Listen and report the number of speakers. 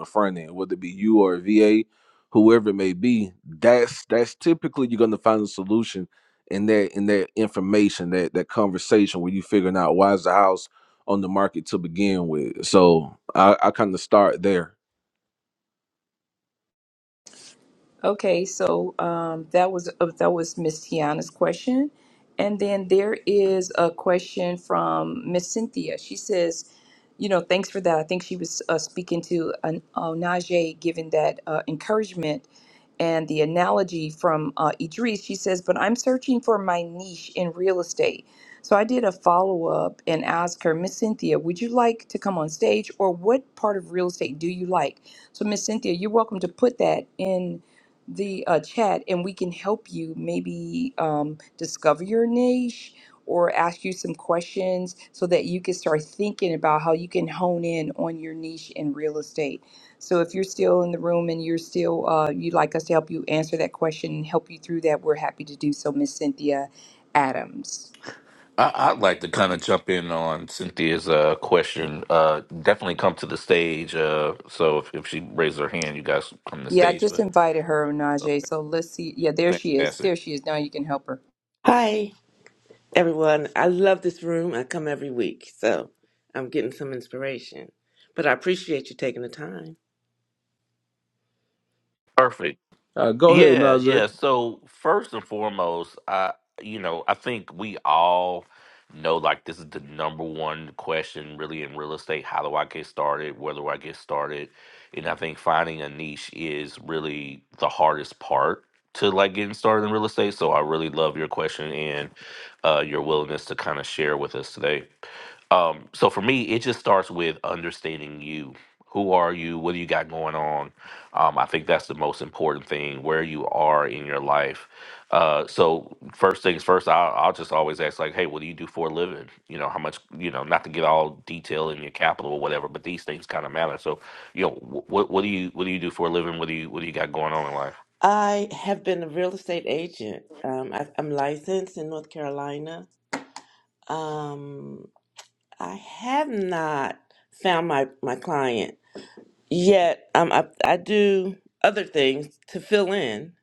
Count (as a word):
four